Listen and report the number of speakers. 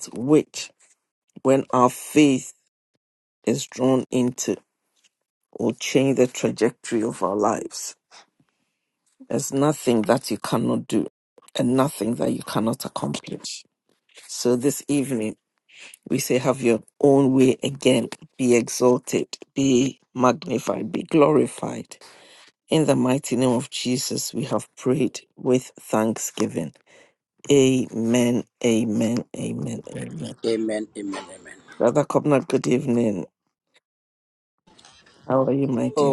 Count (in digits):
2